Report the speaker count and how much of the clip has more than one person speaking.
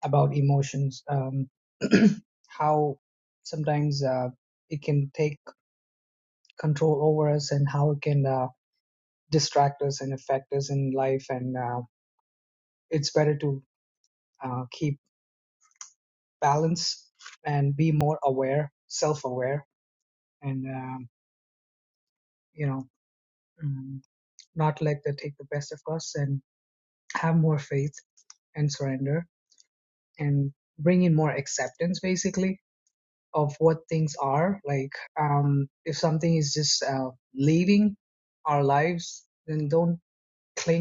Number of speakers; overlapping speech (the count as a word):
one, no overlap